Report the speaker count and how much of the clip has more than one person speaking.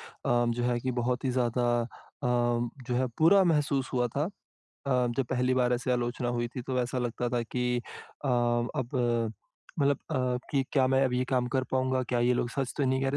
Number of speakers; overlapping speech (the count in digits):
1, no overlap